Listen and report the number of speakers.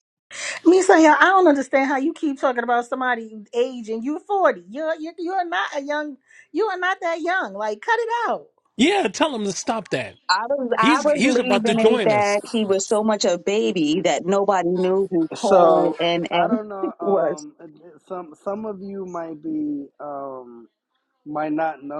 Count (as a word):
four